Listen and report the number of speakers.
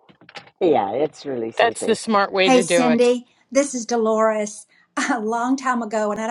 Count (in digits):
3